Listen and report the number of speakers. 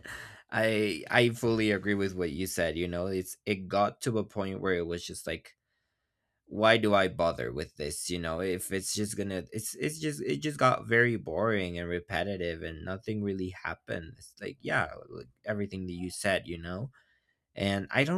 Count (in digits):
1